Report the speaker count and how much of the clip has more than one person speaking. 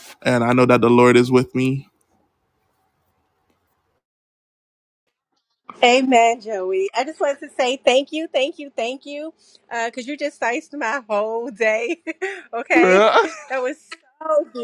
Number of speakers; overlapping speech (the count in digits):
2, no overlap